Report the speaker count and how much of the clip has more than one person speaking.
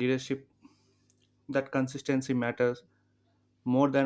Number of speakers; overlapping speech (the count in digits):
1, no overlap